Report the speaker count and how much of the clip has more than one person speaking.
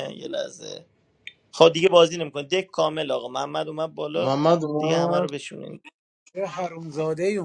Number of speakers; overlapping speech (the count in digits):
3, about 8%